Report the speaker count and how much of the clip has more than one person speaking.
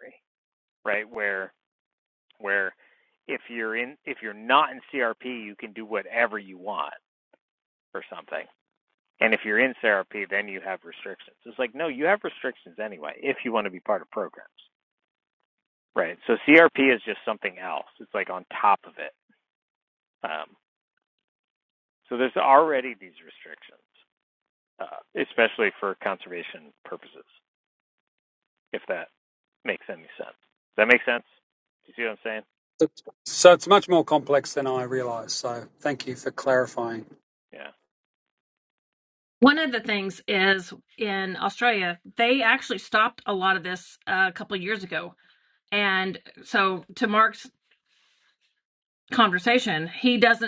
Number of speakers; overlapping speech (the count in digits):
3, no overlap